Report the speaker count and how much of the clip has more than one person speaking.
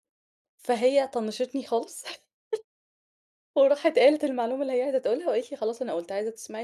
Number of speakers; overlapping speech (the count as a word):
one, no overlap